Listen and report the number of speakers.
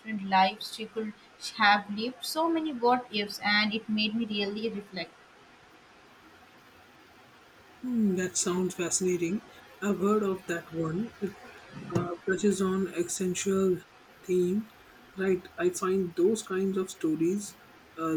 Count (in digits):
2